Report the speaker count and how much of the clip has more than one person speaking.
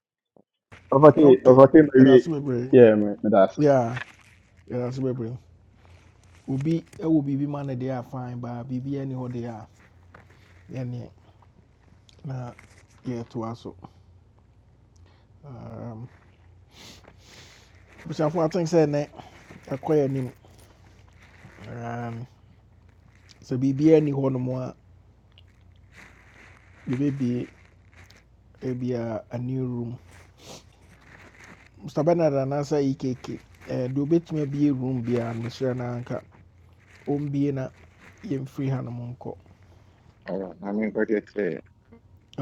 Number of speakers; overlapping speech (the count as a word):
three, about 2%